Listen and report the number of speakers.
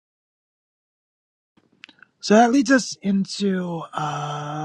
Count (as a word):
one